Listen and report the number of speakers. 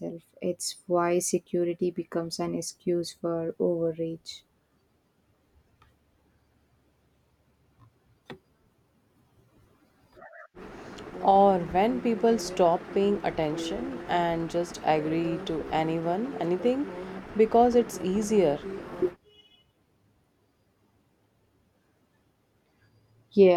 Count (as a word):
two